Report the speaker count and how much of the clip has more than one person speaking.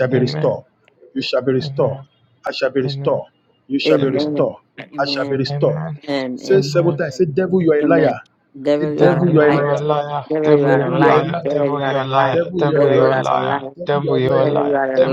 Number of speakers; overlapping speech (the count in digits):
3, about 63%